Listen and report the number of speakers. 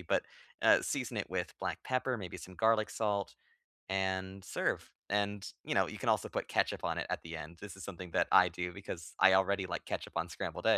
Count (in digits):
1